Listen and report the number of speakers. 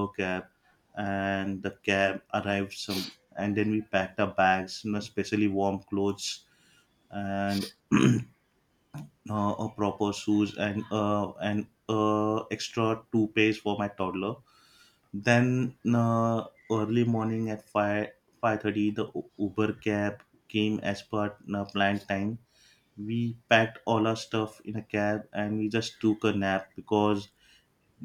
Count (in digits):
1